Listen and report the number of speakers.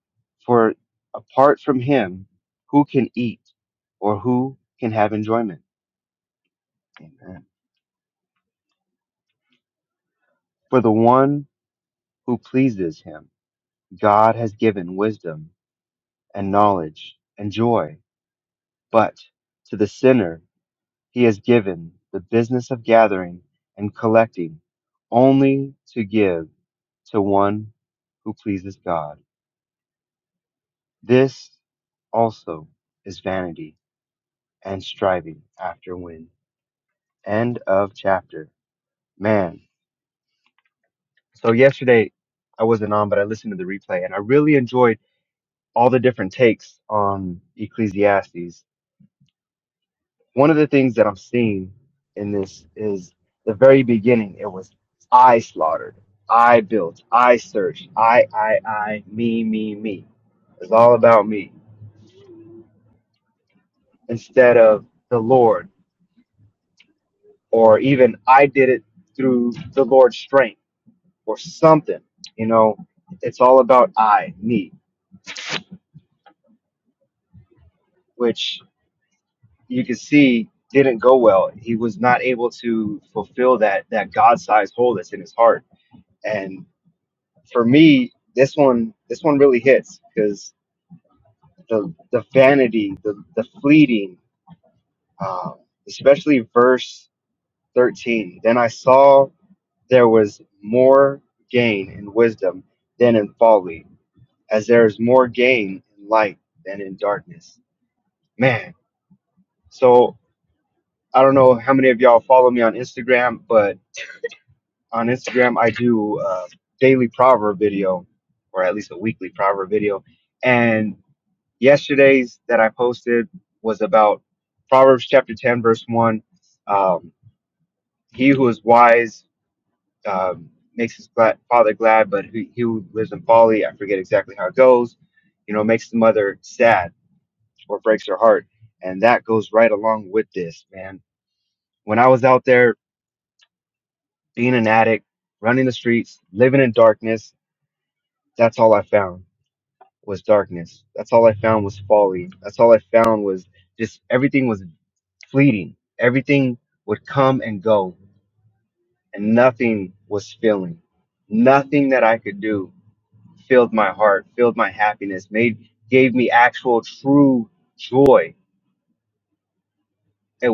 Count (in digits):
1